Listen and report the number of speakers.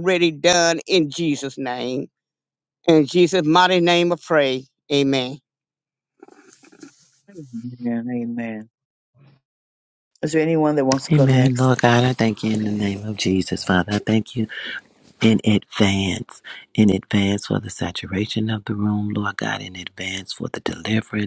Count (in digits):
3